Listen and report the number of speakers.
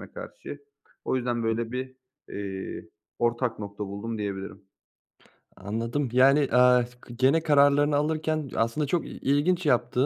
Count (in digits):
2